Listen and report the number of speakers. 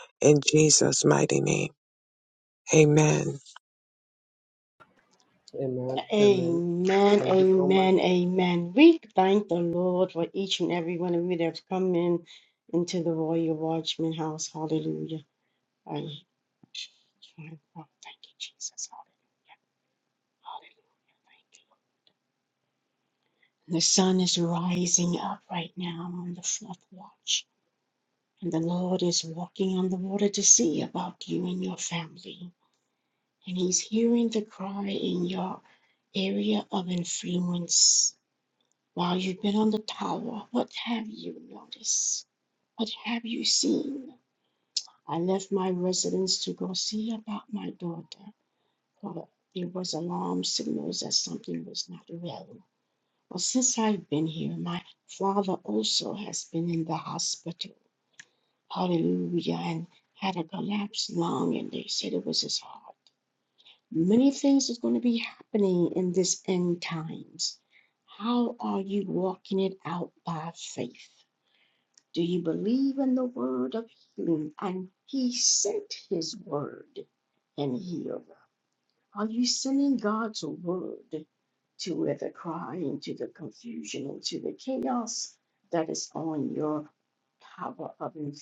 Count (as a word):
three